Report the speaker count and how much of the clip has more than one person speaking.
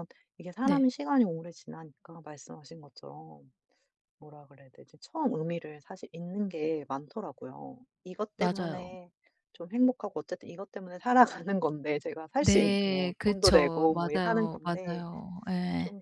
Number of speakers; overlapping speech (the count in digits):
2, about 21%